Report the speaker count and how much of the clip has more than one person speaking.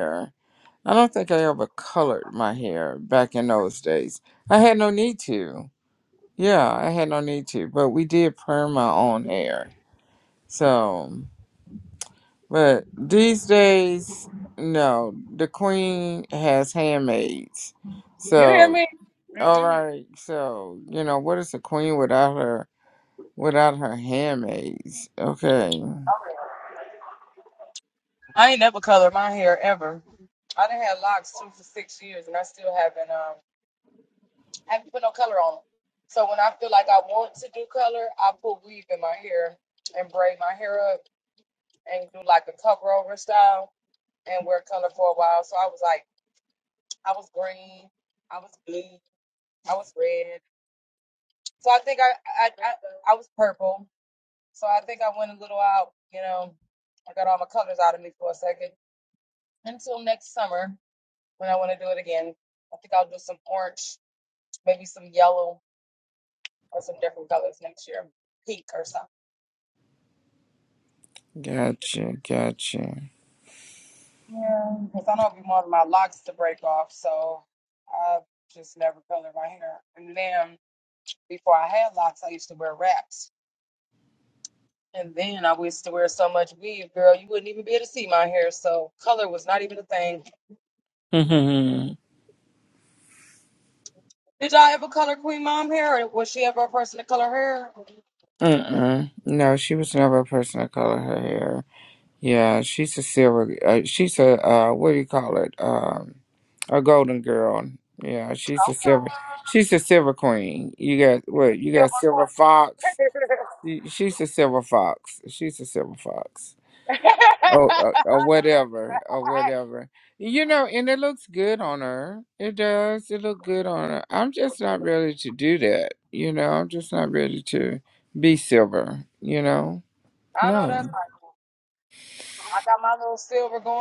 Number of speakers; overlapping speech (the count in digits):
2, about 1%